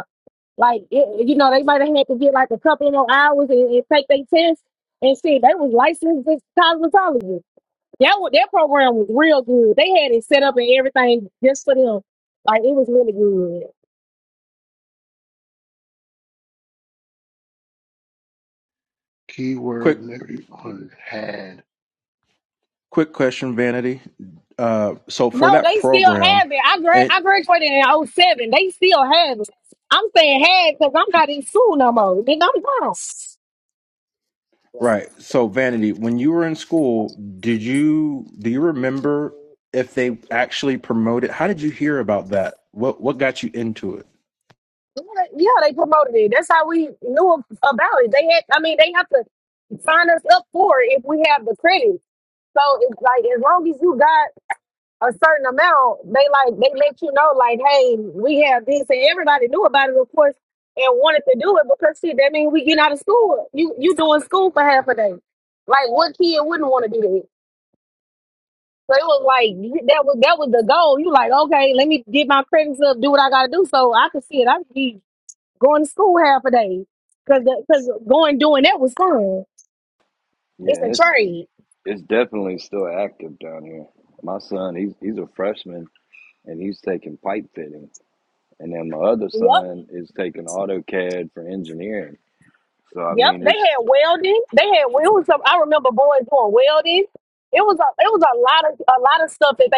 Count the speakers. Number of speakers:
four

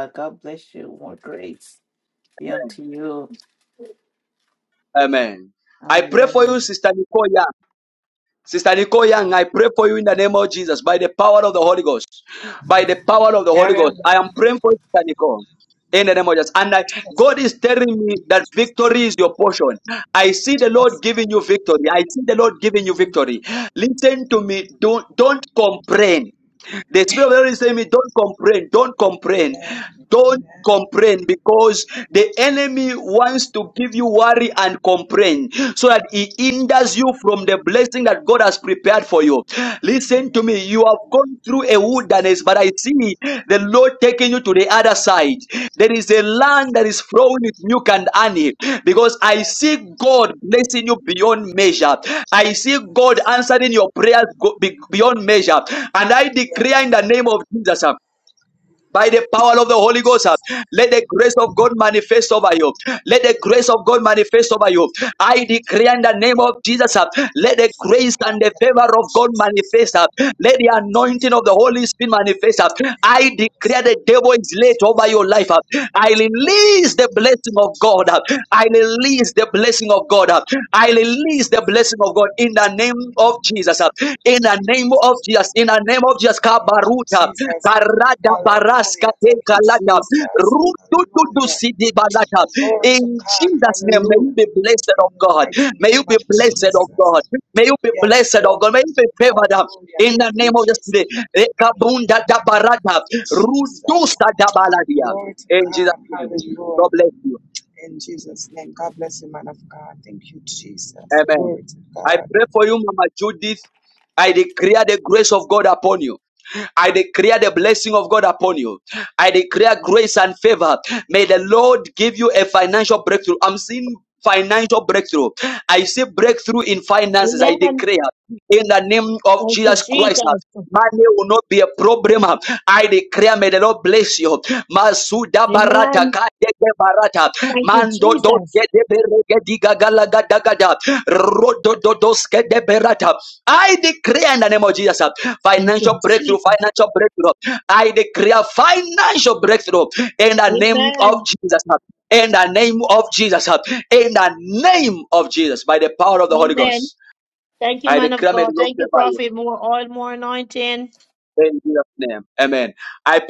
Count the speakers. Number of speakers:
four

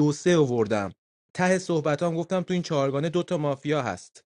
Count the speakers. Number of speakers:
one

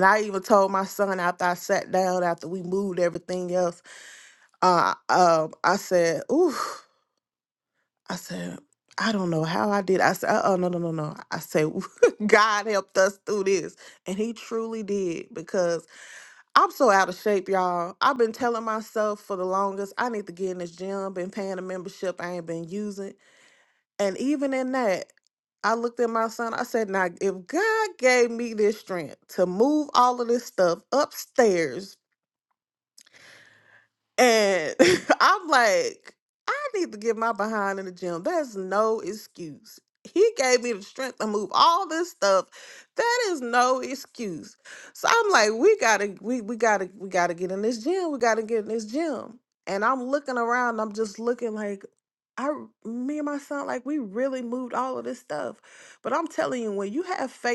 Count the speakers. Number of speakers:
one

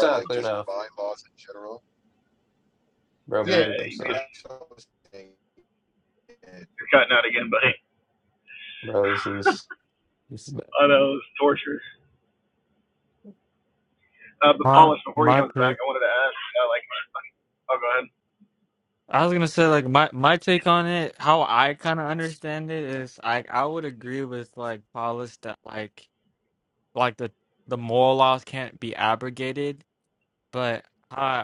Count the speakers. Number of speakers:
four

